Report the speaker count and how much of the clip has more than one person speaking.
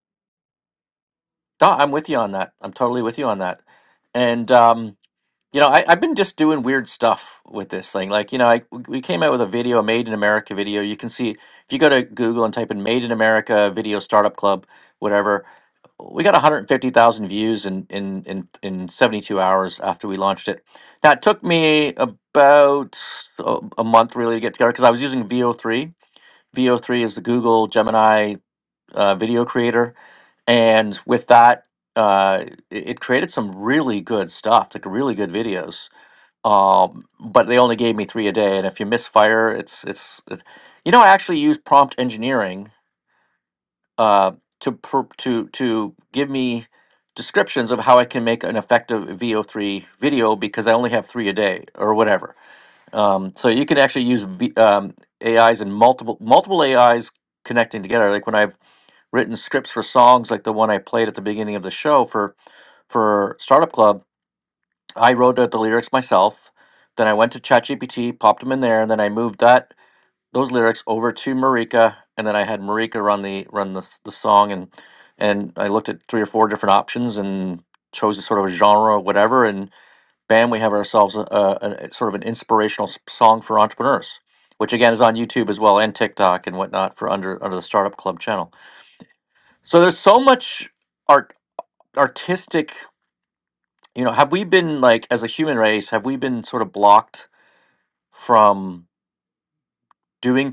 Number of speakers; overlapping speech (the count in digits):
1, no overlap